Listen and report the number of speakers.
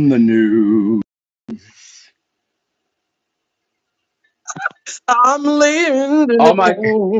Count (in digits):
2